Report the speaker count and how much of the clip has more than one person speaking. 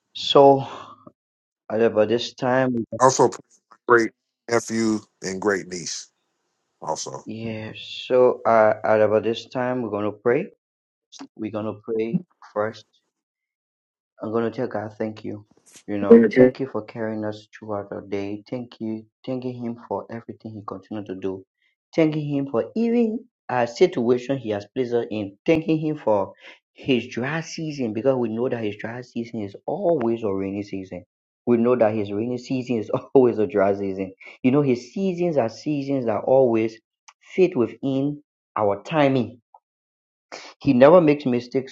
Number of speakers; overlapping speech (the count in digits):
2, no overlap